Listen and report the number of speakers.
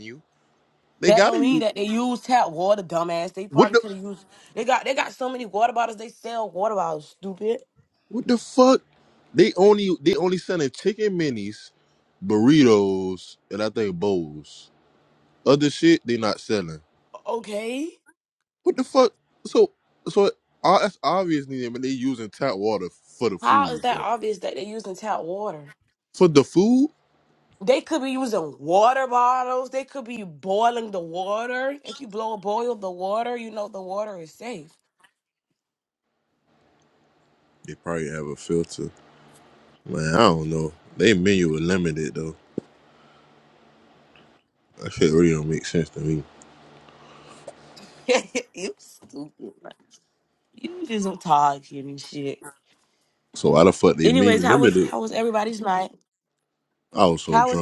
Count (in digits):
2